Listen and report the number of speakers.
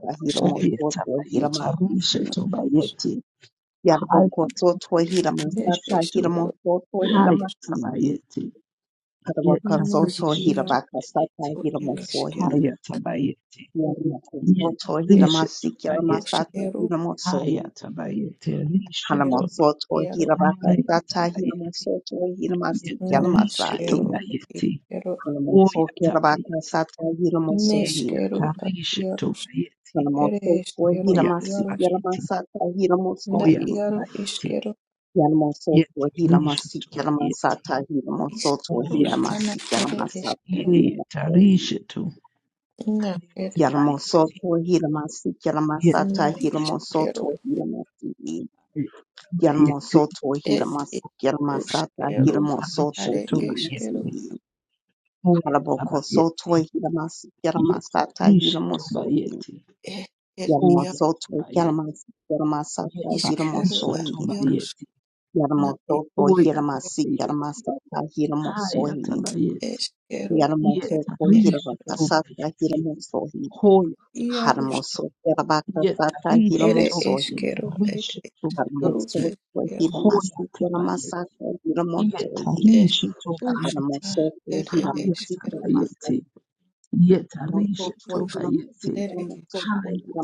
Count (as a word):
three